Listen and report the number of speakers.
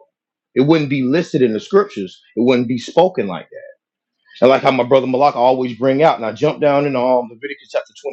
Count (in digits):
1